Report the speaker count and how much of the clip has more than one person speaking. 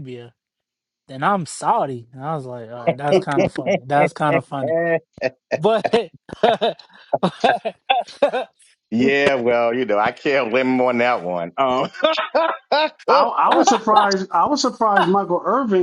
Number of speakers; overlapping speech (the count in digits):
3, about 1%